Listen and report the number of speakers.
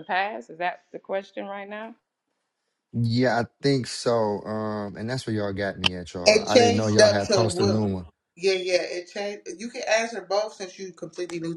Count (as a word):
three